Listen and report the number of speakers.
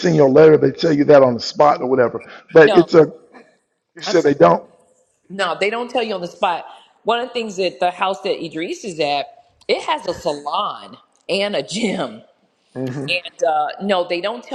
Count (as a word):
two